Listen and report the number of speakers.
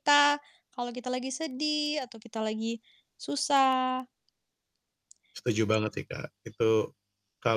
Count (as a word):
two